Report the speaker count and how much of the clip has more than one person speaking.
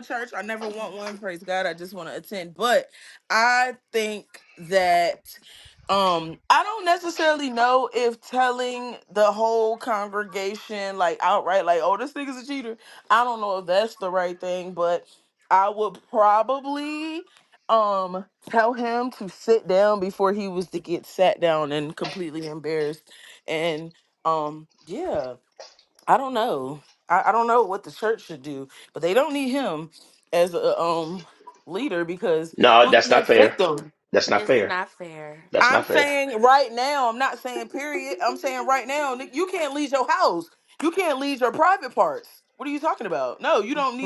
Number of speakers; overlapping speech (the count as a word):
two, about 3%